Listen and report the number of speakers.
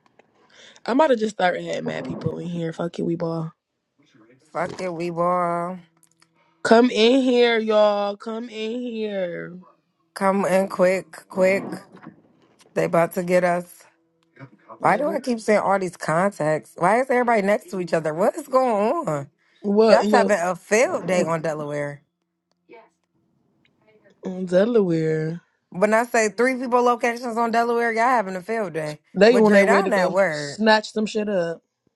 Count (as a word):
two